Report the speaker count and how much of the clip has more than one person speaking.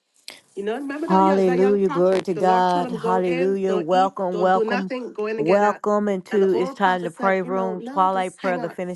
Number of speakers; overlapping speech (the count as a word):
two, about 74%